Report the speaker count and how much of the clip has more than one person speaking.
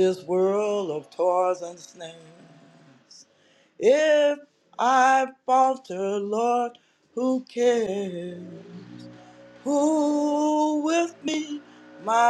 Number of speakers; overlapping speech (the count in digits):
1, no overlap